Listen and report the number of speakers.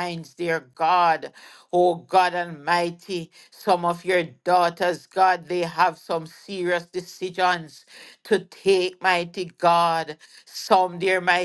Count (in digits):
1